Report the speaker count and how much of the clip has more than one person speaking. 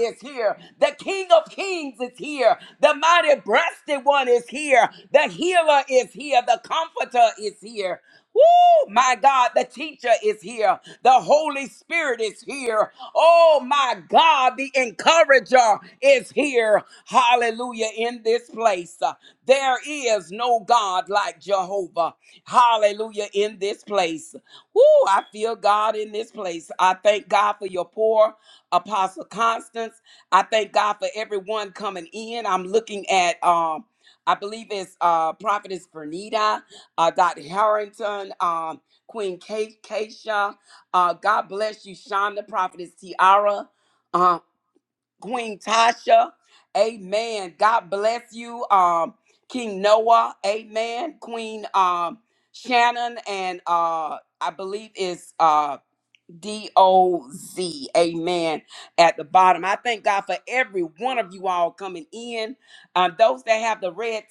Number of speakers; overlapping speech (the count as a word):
one, no overlap